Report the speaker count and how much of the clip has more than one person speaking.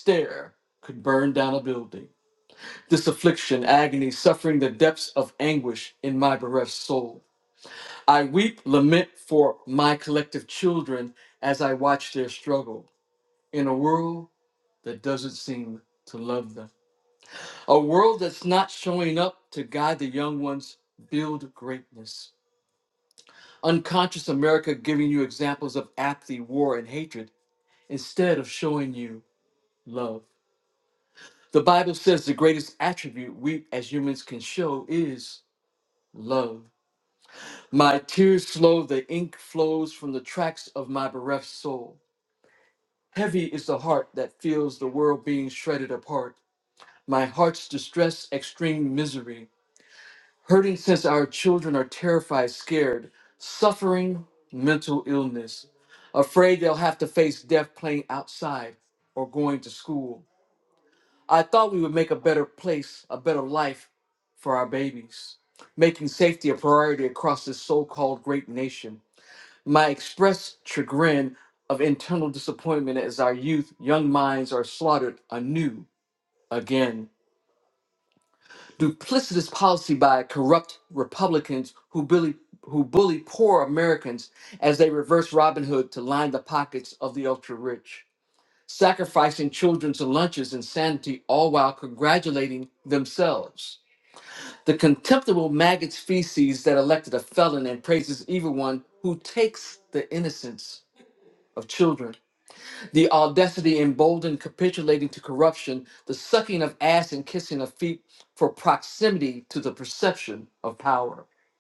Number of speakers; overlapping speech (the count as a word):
one, no overlap